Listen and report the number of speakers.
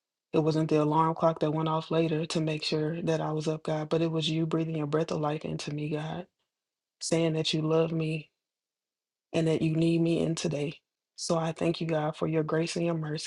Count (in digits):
1